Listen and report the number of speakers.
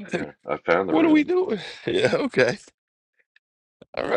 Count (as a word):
two